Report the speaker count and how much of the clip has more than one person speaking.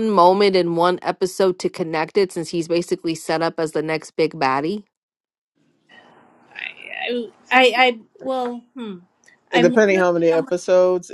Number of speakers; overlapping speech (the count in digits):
3, about 9%